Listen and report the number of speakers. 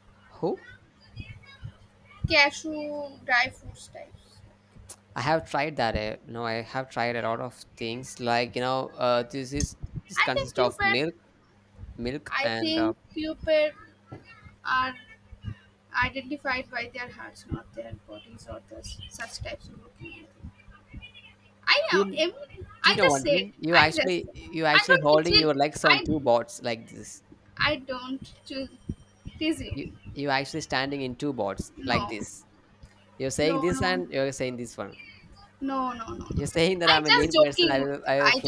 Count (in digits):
2